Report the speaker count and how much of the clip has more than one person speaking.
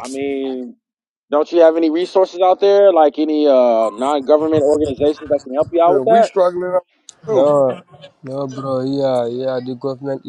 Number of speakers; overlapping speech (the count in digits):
3, about 6%